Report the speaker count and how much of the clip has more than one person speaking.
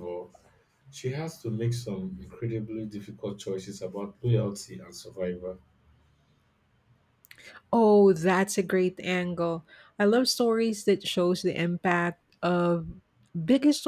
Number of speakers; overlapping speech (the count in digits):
2, no overlap